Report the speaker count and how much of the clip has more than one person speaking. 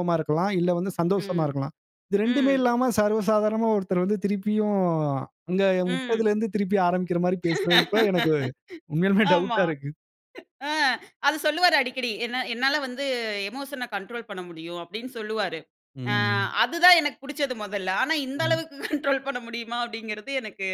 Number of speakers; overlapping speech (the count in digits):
2, about 9%